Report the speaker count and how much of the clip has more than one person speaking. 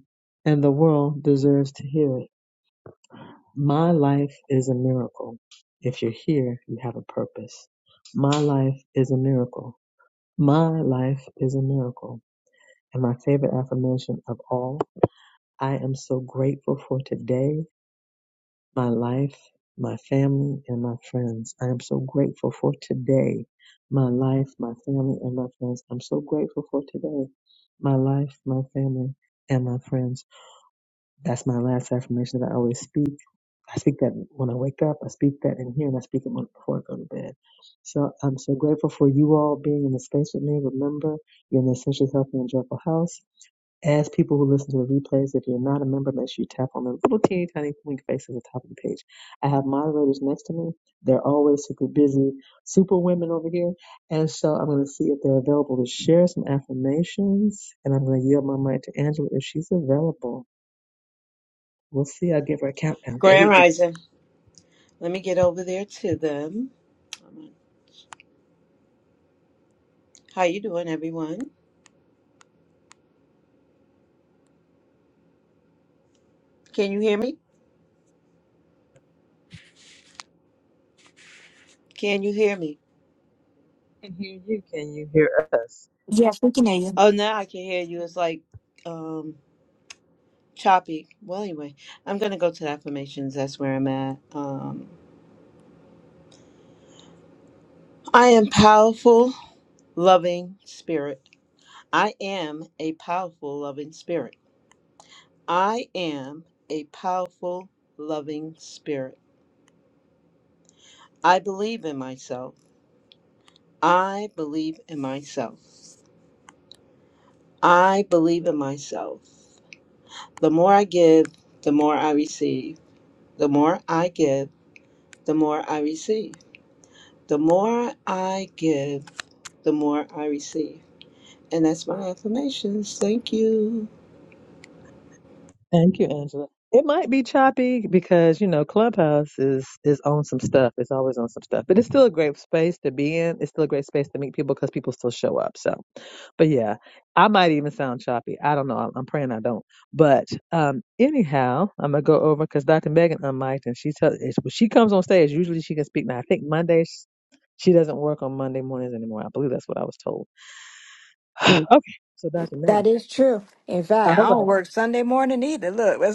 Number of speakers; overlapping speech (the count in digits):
3, about 1%